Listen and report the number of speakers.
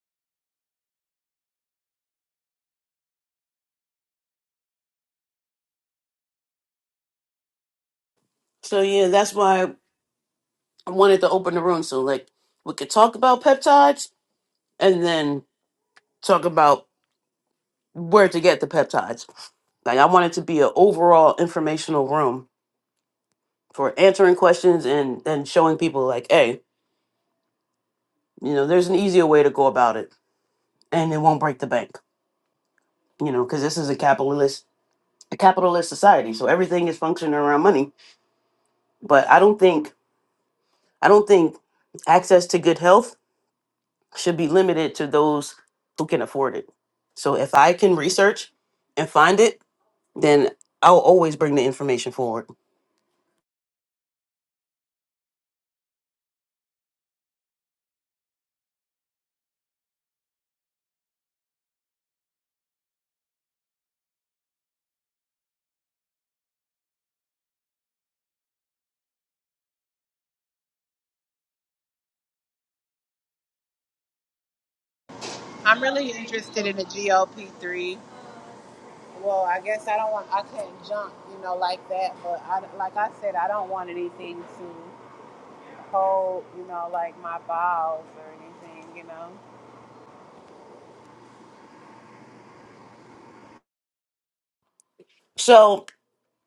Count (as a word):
two